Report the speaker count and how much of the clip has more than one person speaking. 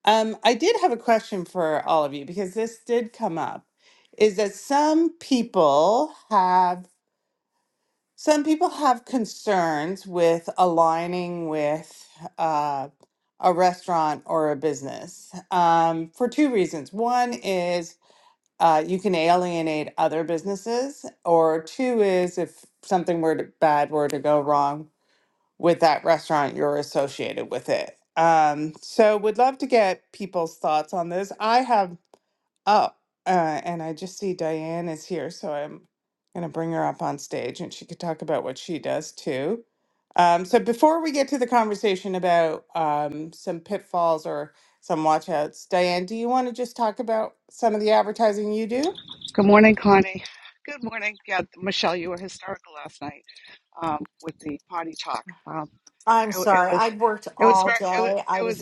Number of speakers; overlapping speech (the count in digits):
3, about 3%